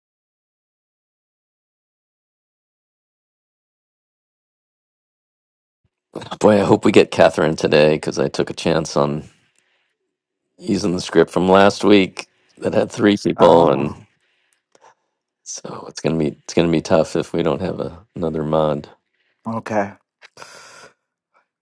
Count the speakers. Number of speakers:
2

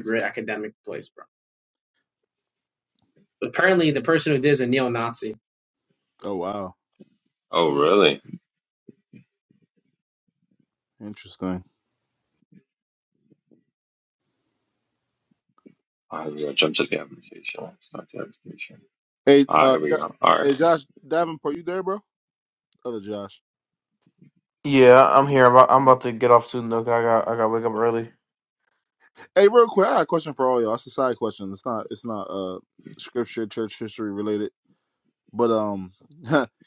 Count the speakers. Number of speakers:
4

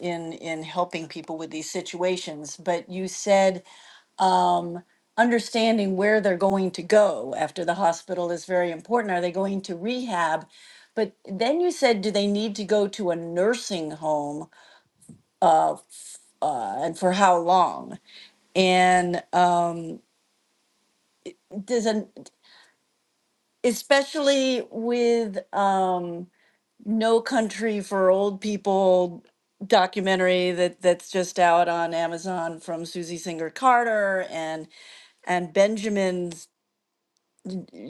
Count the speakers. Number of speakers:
1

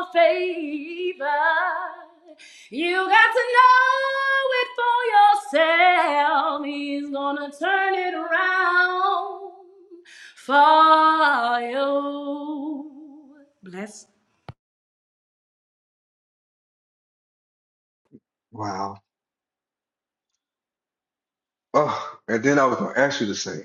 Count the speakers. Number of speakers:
2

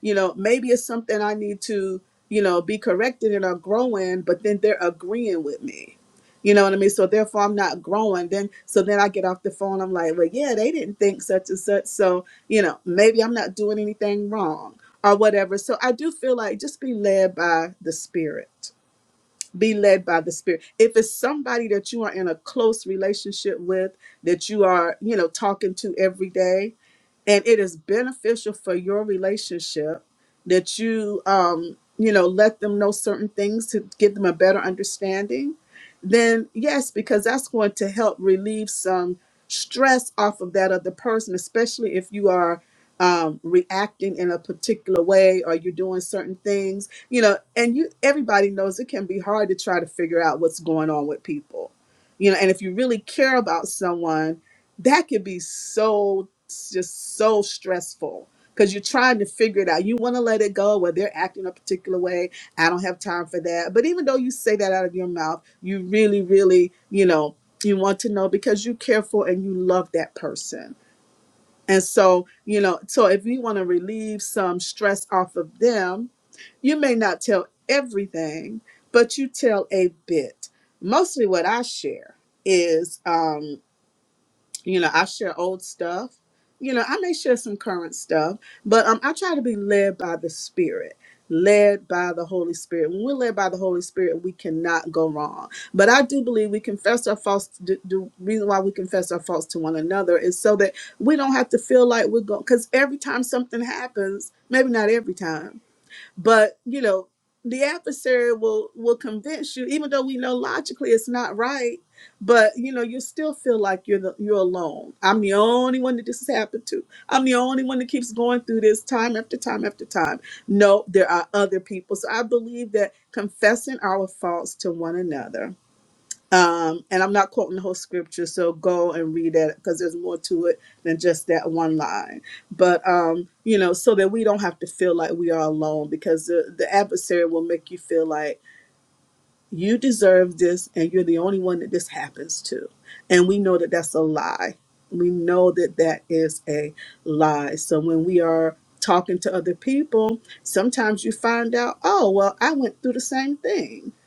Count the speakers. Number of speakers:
1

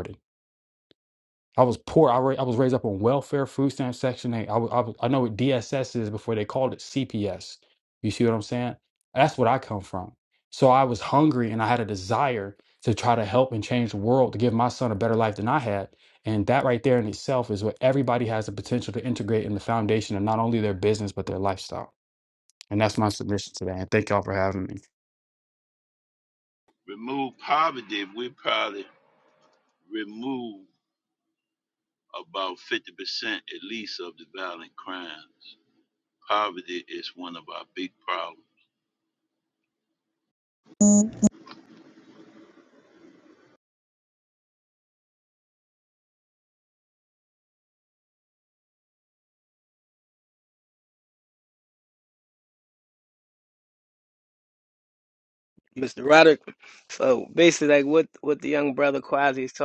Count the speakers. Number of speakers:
3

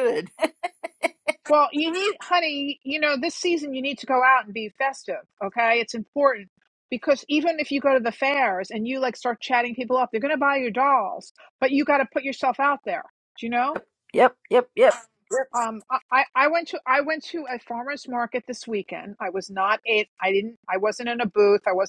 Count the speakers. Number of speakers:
2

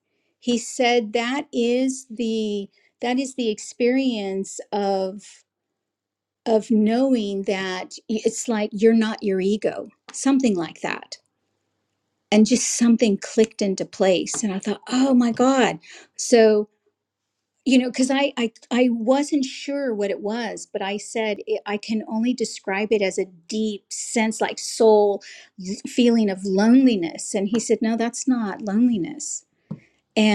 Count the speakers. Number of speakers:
1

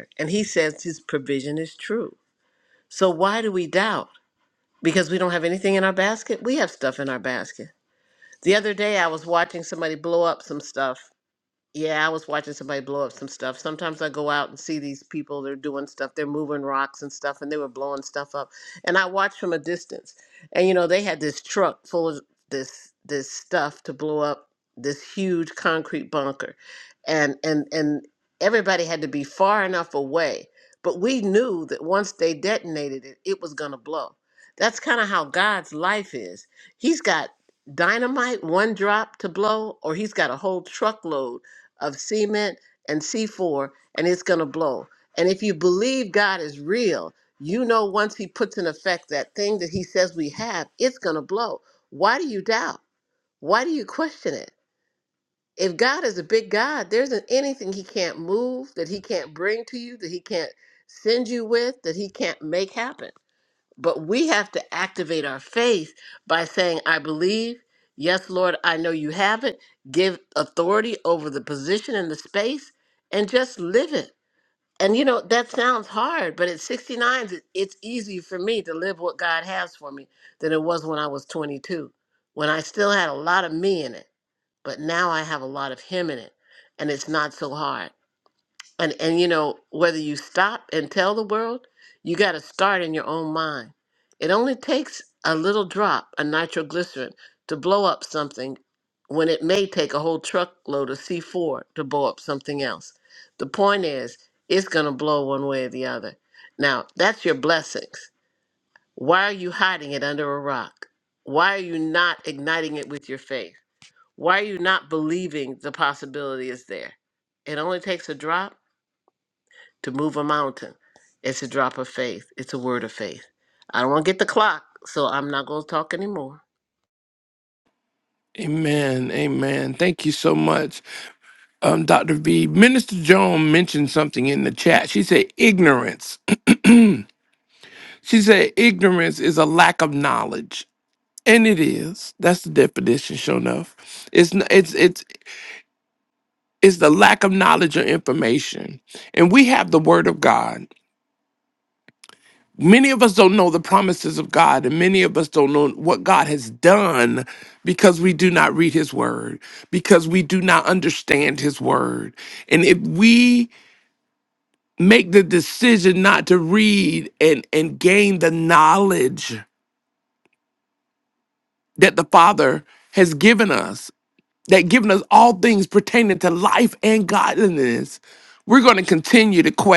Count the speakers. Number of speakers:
2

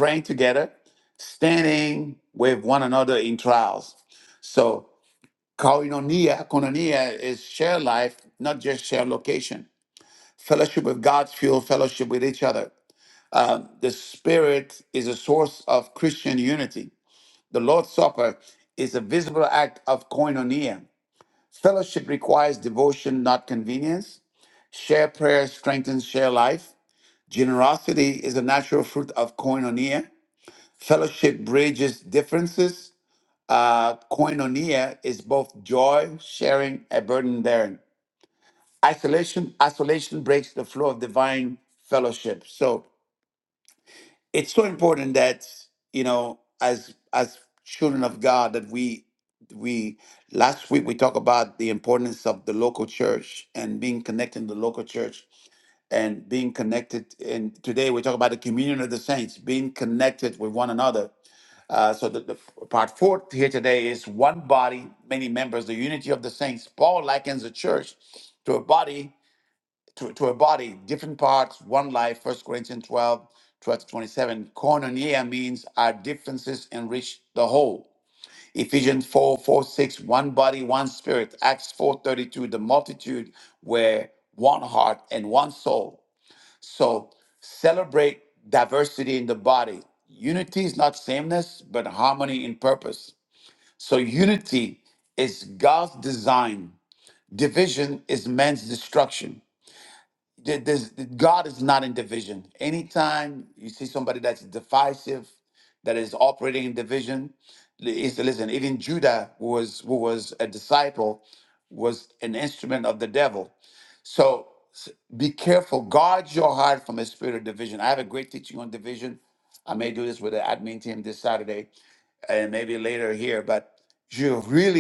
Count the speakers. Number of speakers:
1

